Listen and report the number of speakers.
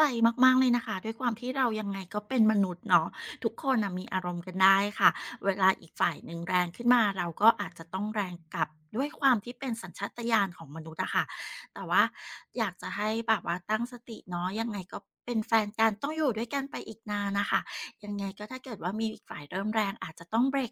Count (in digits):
1